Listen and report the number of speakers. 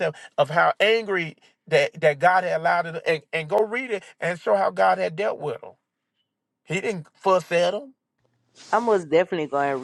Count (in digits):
2